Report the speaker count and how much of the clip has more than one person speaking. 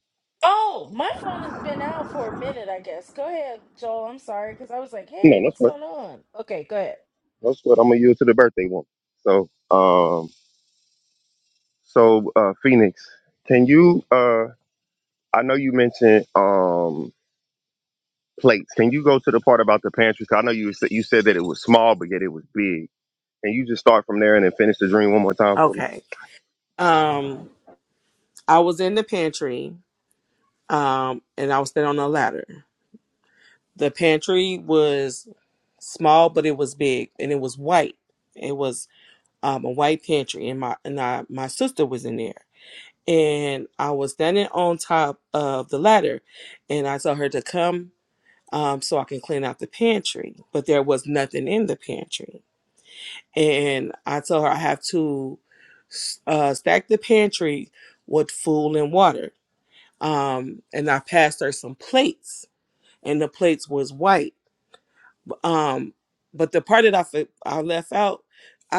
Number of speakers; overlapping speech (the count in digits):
3, about 1%